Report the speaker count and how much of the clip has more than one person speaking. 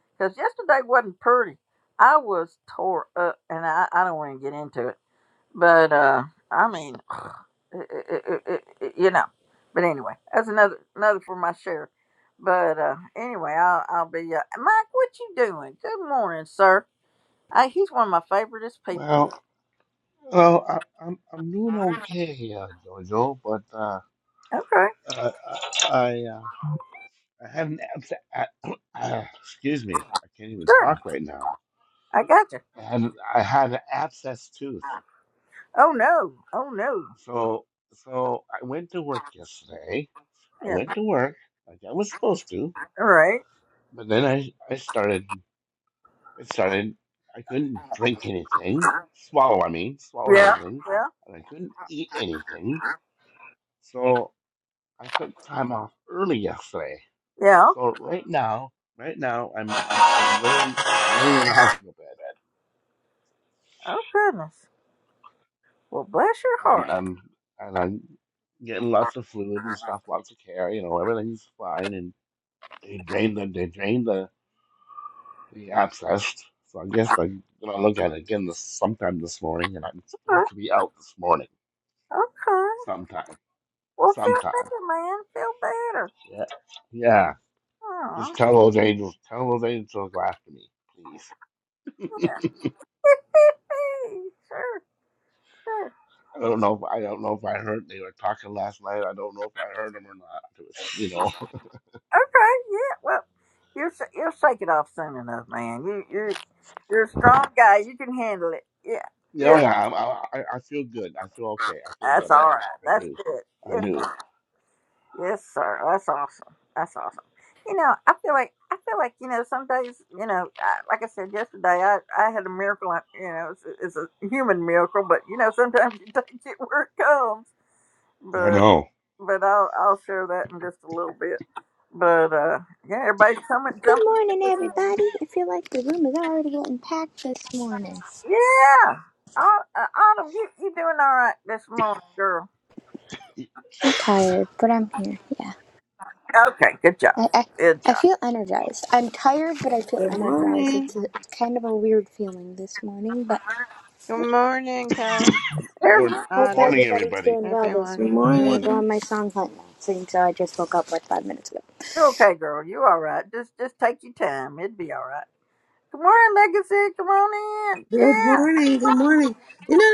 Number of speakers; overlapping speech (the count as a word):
five, about 6%